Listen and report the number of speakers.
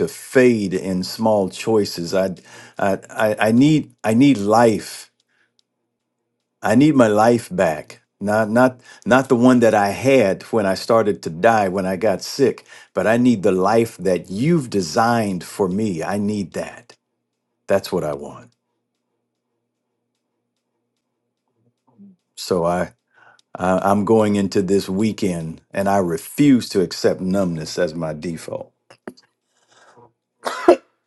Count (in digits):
1